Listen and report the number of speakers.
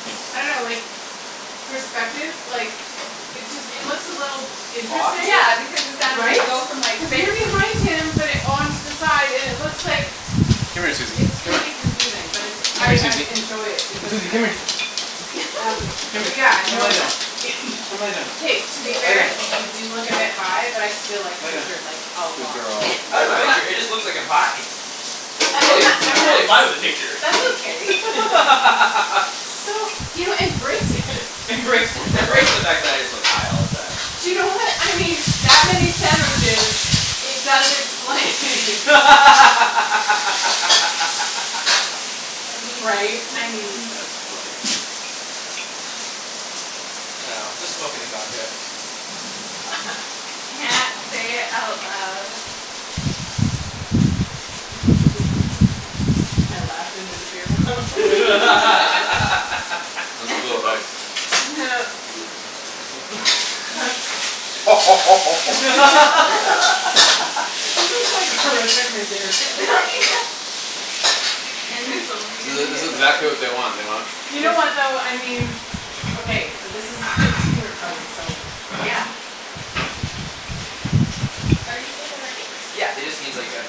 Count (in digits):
4